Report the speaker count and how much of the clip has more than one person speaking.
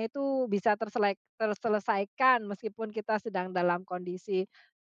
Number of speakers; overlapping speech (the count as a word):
one, no overlap